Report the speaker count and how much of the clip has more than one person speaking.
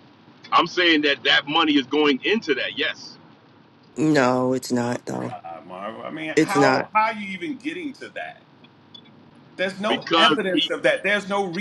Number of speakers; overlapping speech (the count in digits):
3, about 12%